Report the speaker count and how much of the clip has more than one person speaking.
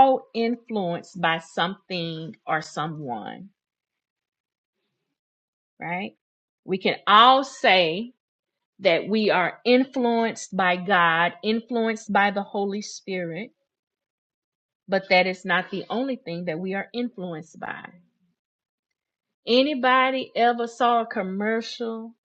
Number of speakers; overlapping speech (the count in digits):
1, no overlap